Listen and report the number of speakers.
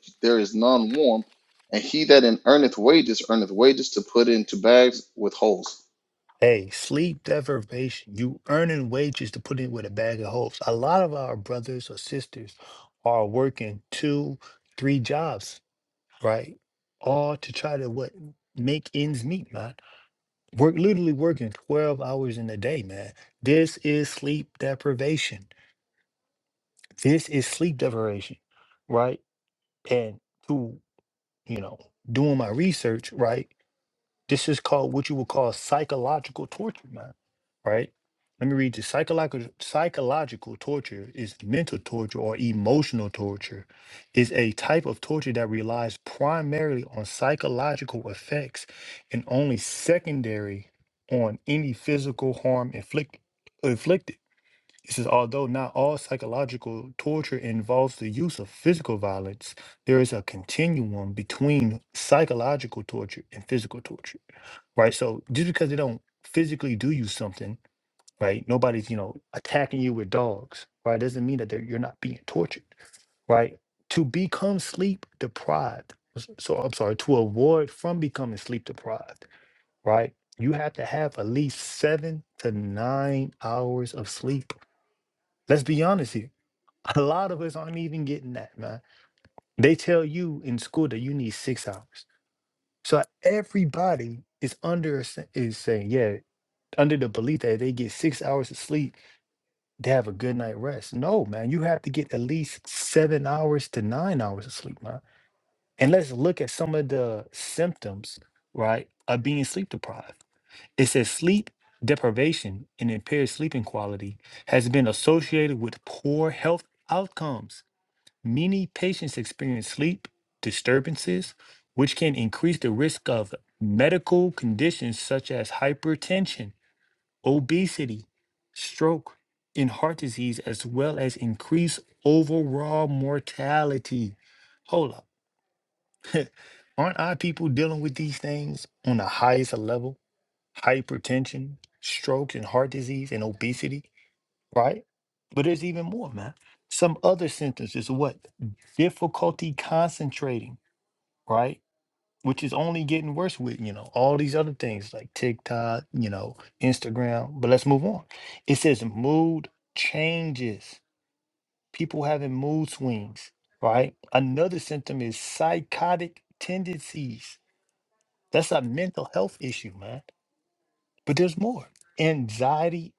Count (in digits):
2